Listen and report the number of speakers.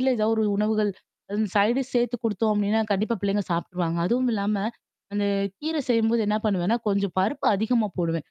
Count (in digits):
1